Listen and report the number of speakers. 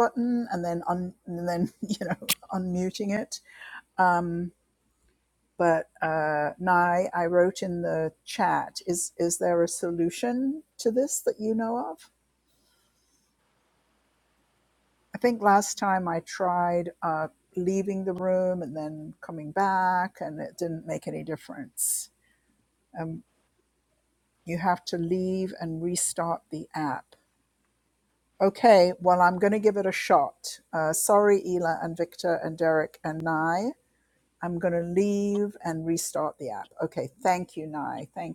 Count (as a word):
one